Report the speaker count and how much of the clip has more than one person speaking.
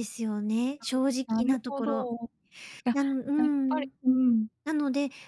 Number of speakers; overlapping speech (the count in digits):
2, about 19%